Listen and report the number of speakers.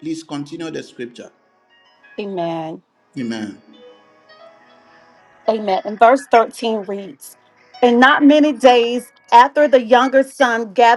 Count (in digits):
2